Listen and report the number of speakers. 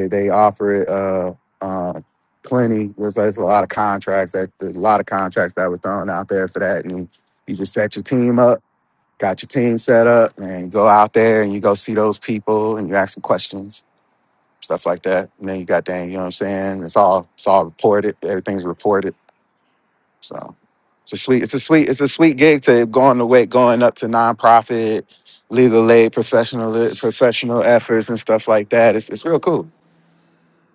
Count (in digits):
1